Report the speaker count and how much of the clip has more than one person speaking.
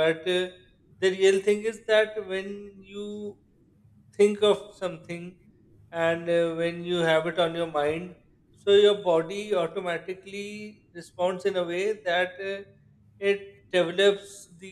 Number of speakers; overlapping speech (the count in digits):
1, no overlap